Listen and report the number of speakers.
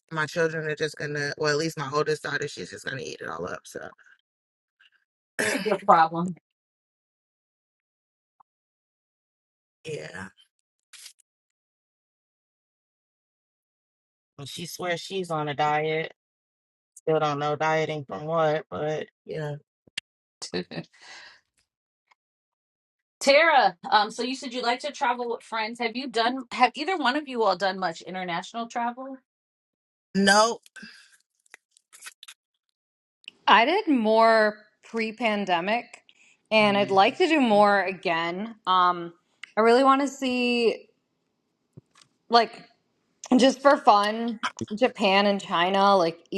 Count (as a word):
three